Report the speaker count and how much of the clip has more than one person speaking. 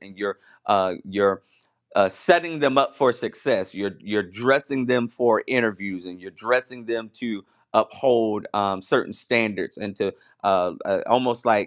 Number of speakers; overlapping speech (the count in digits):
1, no overlap